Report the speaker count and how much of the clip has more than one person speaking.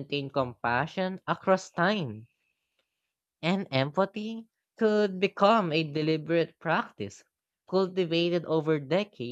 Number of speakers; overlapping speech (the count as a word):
one, no overlap